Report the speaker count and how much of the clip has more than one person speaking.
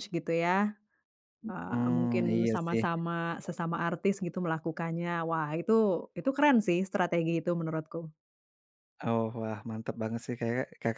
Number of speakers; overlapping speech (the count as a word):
two, about 11%